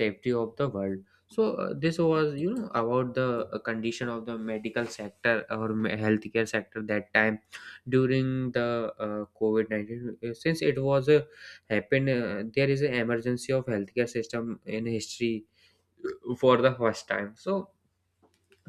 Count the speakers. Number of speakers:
1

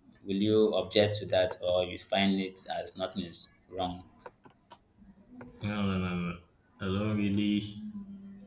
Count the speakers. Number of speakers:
2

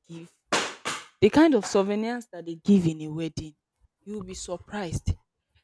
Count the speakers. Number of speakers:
1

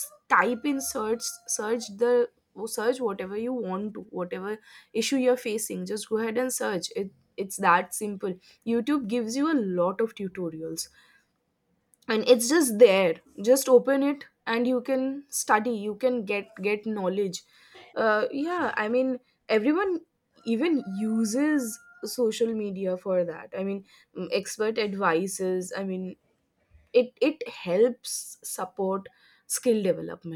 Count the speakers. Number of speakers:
1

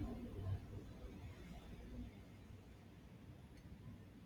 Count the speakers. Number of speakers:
0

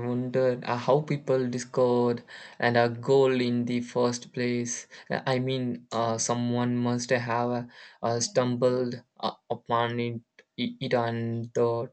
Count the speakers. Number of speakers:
1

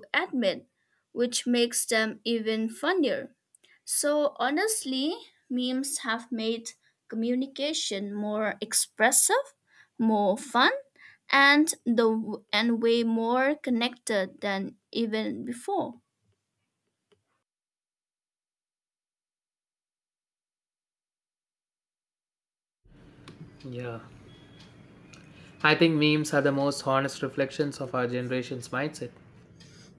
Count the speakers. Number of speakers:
2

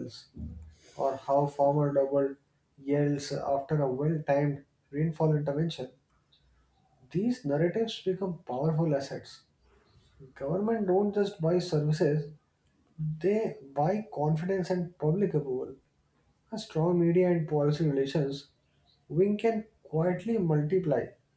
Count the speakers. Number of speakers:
1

